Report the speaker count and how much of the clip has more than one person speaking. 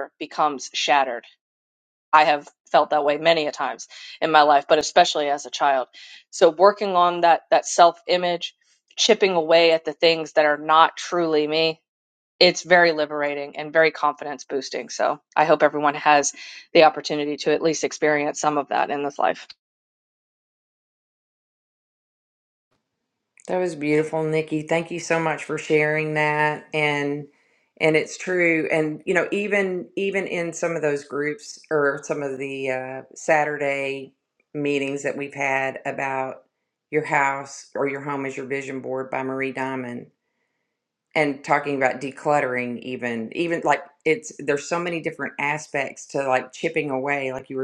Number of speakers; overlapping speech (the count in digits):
2, no overlap